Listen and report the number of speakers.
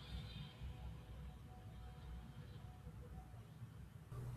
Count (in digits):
0